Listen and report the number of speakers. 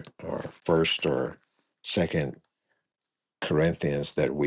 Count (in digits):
1